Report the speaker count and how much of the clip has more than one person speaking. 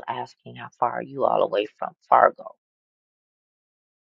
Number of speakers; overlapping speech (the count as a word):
one, no overlap